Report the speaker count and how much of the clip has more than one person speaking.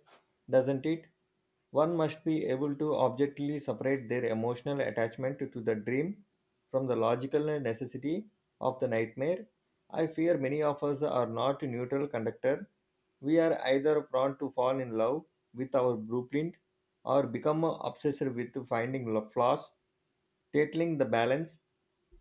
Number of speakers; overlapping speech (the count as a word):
one, no overlap